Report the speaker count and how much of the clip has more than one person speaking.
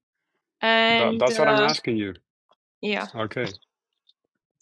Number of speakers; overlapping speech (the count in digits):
2, about 18%